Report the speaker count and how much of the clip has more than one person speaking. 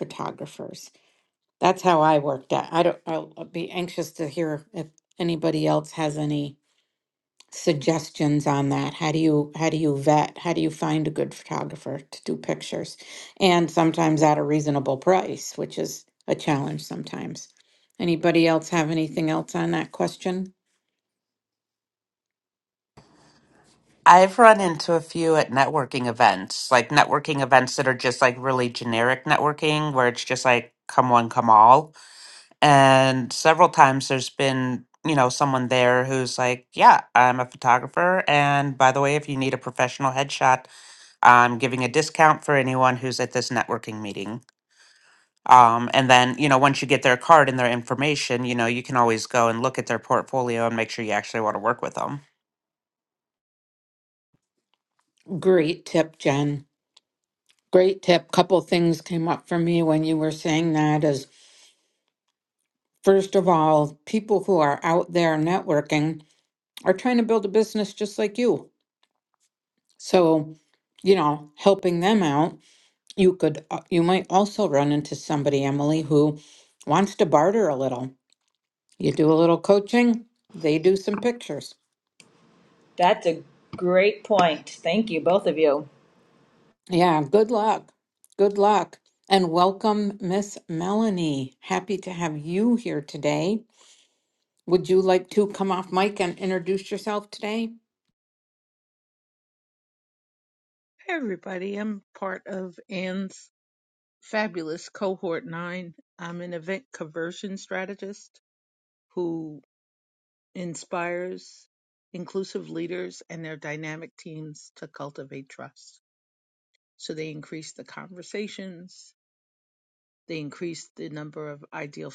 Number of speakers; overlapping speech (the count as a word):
four, no overlap